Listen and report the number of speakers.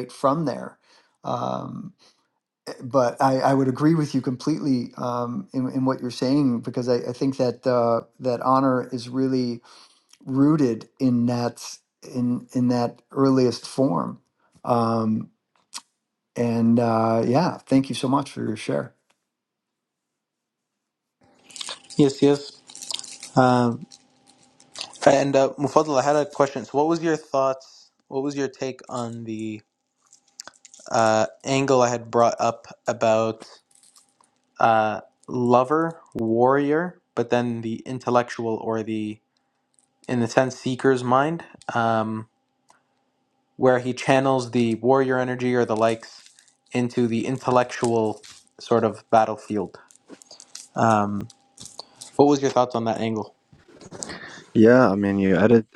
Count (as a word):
three